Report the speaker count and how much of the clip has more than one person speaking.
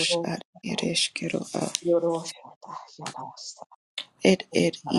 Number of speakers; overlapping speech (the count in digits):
2, about 8%